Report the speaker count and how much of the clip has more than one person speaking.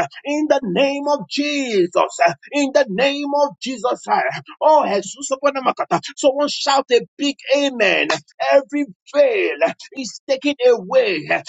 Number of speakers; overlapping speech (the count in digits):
1, no overlap